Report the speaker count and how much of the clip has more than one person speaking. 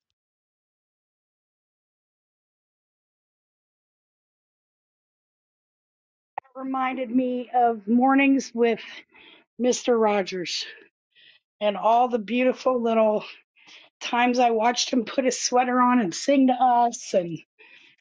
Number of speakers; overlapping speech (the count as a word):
one, no overlap